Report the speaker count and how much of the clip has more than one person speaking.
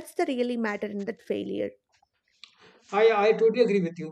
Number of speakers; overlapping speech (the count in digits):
2, no overlap